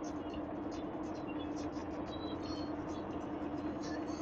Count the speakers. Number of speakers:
zero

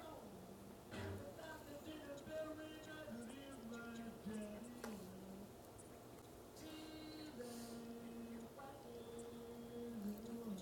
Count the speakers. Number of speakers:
zero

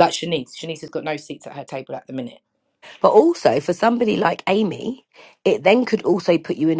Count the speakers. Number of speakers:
two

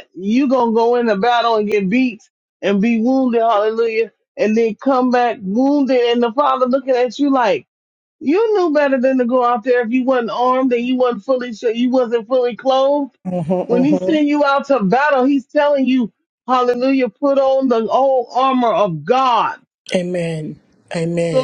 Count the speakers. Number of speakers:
two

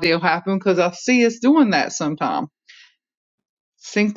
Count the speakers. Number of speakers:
one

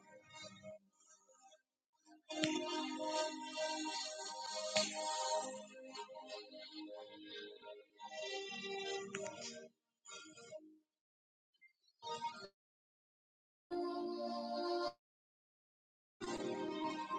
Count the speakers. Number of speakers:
zero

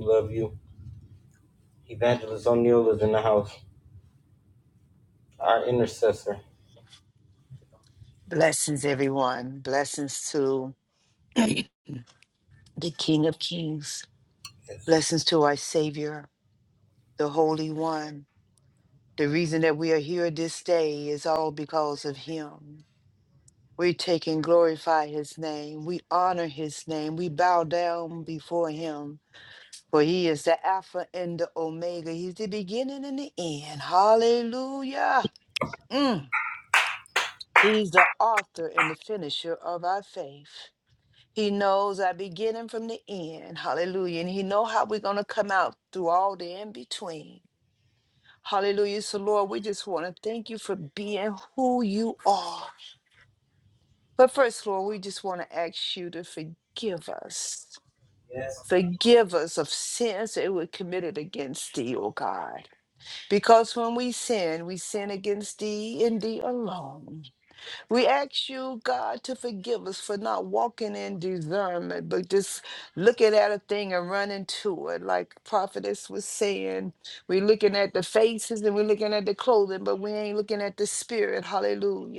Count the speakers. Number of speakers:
two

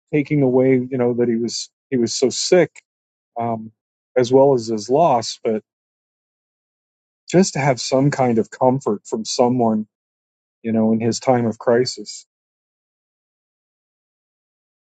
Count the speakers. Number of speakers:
one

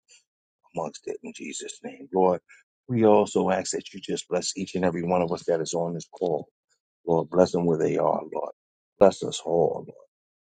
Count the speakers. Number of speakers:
one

